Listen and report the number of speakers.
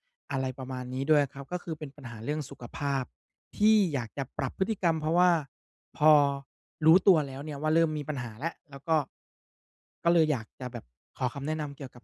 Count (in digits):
1